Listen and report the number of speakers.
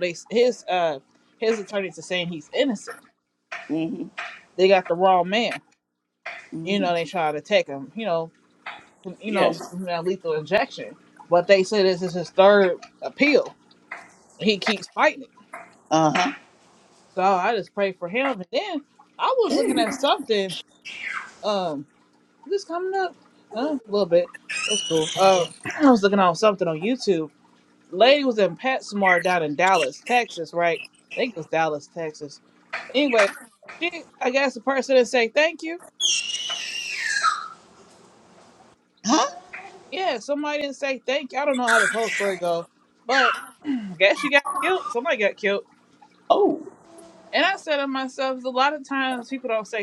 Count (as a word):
two